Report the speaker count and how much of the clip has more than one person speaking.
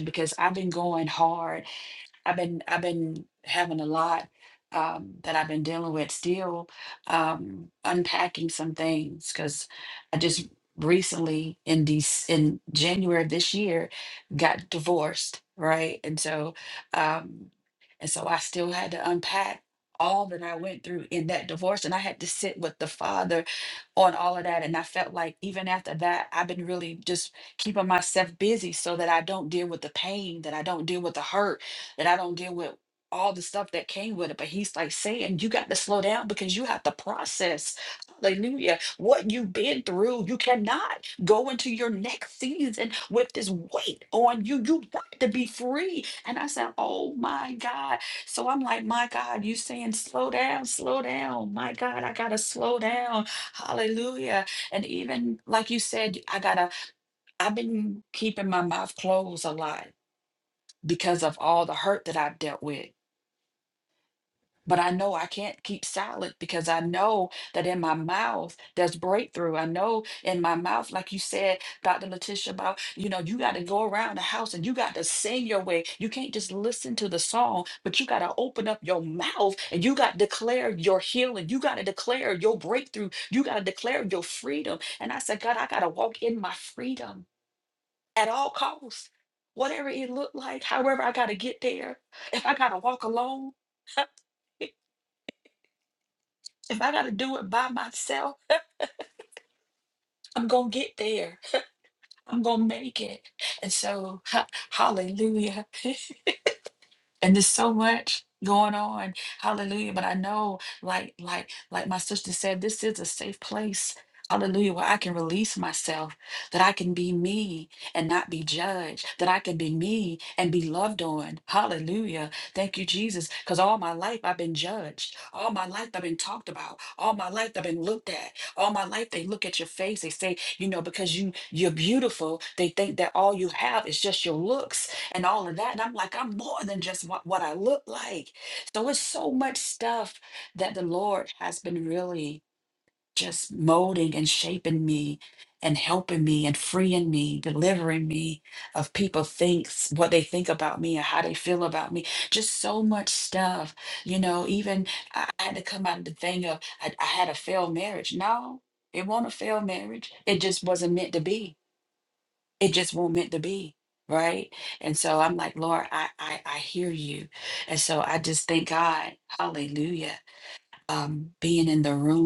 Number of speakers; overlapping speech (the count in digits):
1, no overlap